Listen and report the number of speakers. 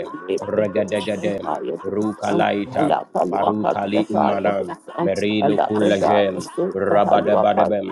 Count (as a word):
two